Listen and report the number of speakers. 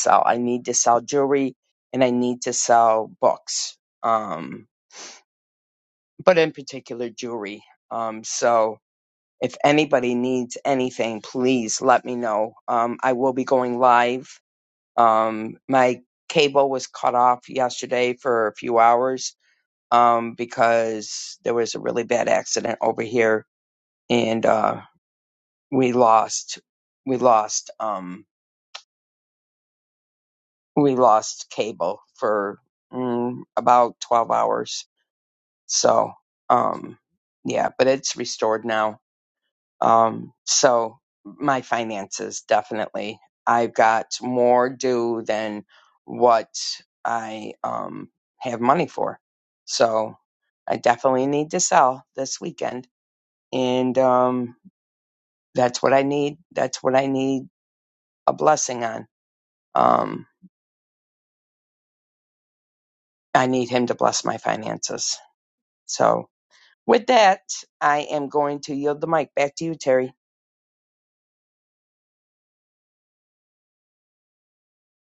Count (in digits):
1